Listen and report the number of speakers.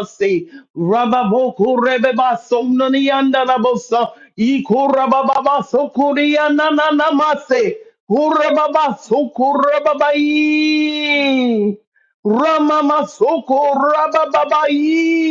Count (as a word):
one